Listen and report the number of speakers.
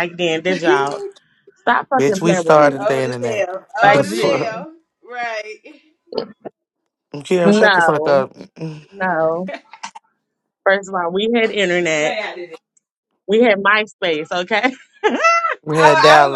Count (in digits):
3